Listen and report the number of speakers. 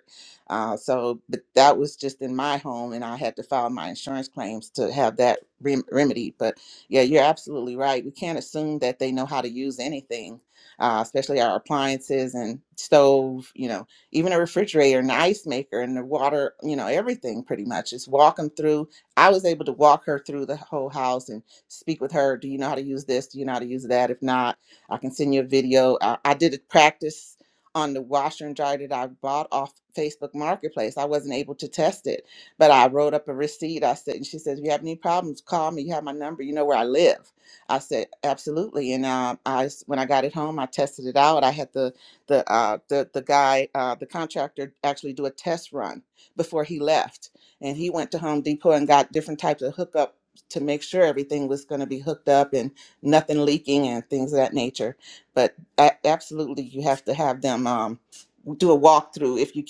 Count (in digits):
1